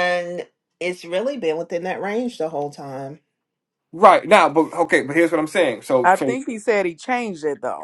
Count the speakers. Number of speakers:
three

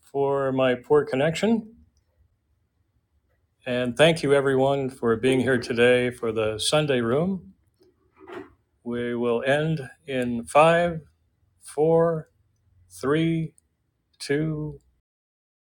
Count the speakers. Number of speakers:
one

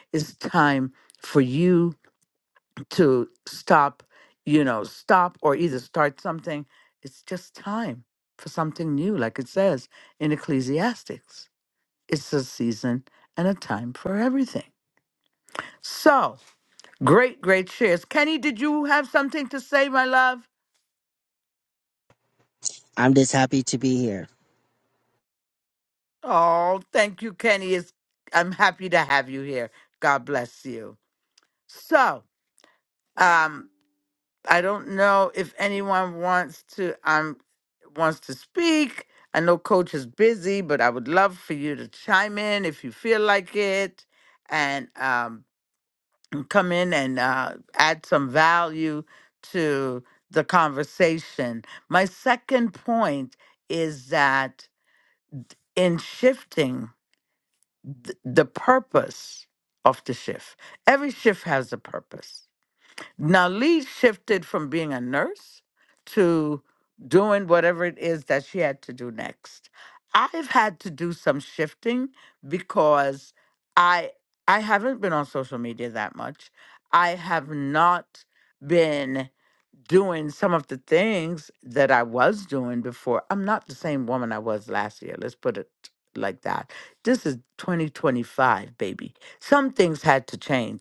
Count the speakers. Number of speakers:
two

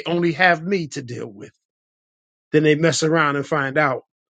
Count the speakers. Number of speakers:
one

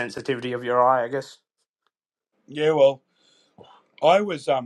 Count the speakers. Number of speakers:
two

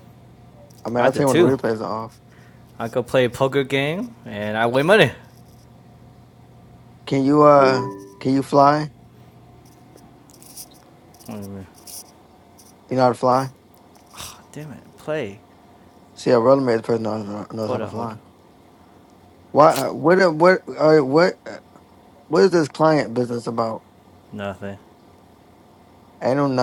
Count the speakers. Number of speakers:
two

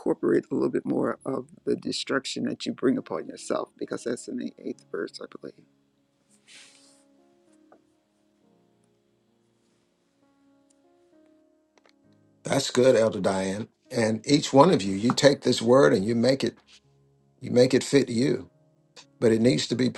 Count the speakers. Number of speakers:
two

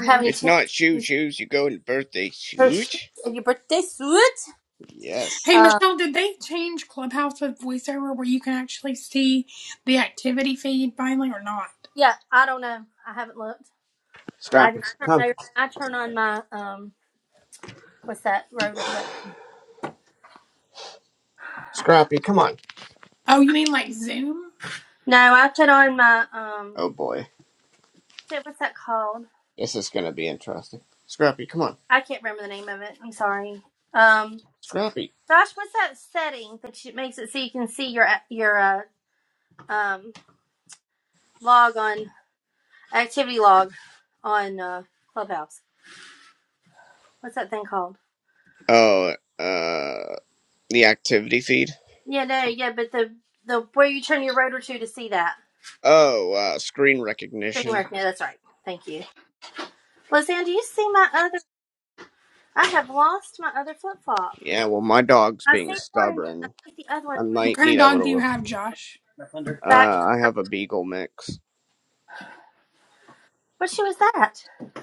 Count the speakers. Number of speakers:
three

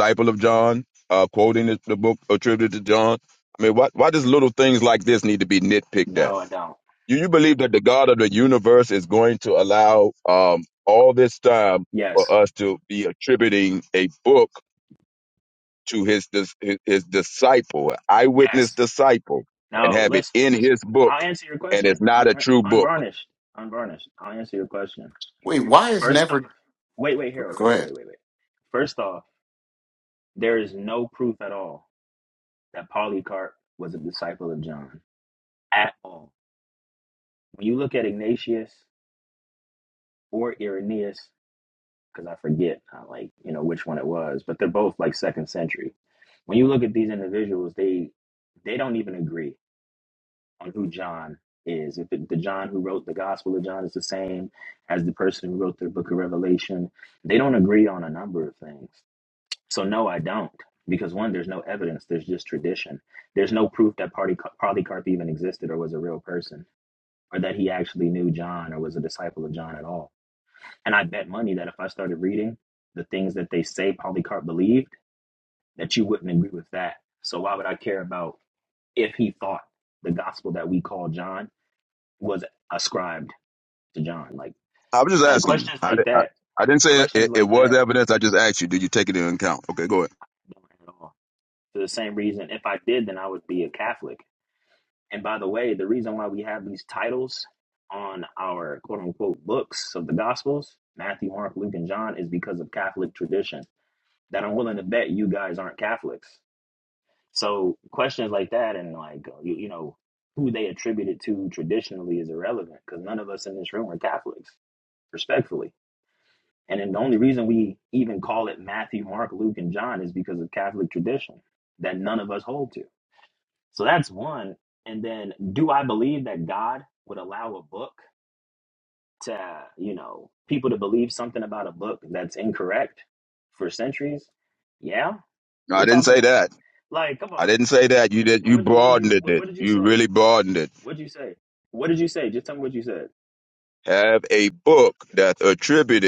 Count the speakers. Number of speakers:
three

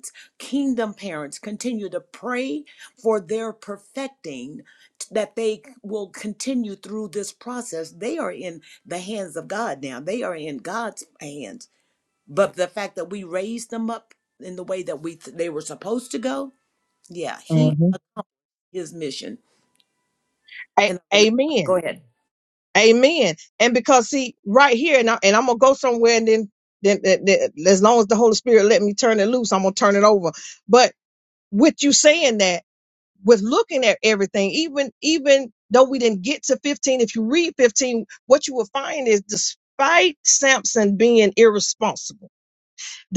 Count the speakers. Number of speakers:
two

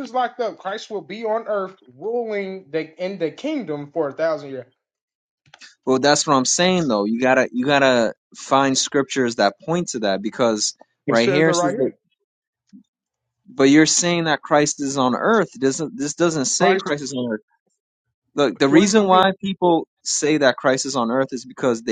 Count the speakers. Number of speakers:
two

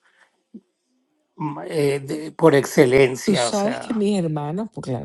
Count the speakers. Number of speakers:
two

